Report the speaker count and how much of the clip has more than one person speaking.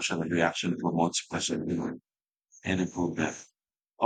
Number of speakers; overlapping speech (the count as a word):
one, no overlap